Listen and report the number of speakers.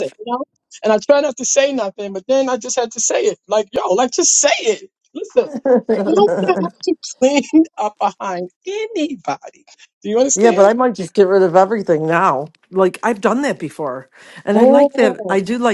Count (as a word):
two